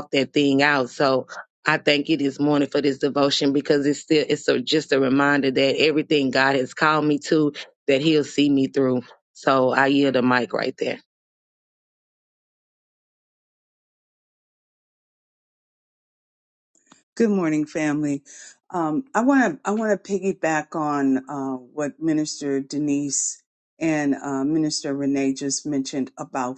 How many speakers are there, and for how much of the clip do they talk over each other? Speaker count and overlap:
2, no overlap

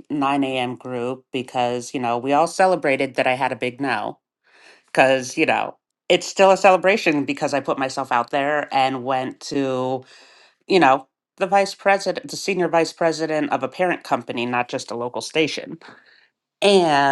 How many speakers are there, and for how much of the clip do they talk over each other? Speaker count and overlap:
1, no overlap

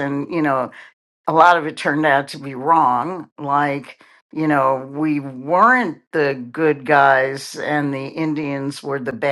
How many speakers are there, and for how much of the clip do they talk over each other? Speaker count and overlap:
1, no overlap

